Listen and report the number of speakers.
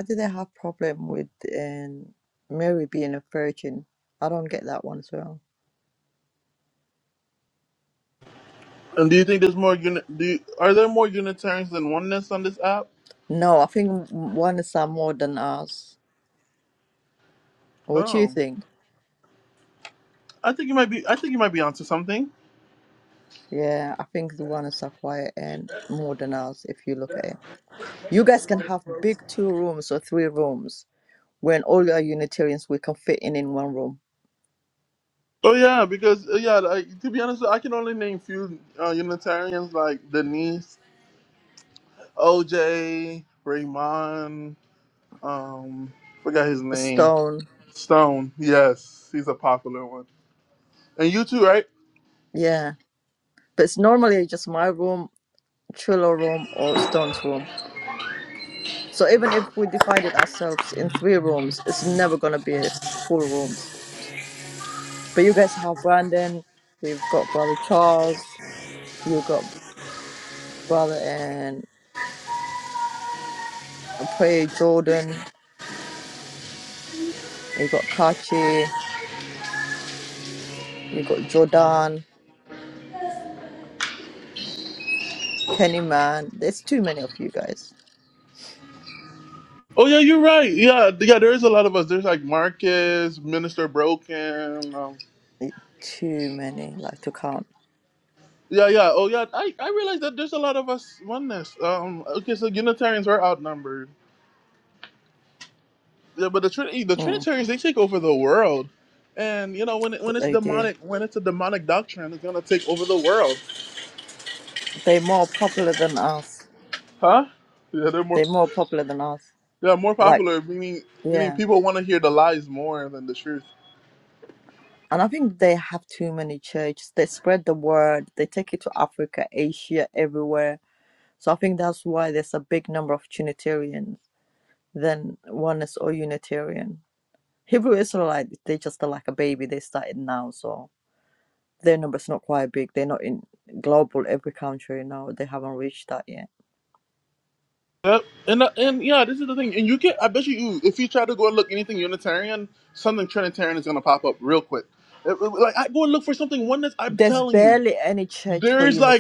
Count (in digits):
2